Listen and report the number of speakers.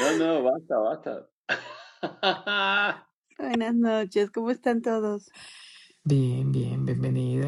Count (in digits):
3